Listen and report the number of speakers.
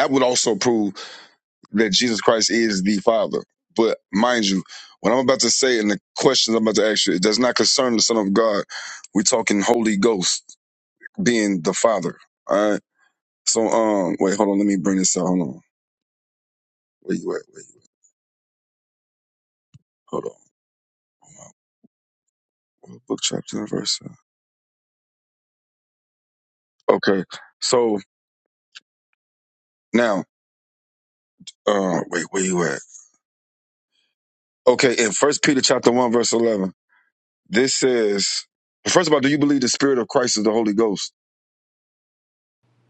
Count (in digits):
1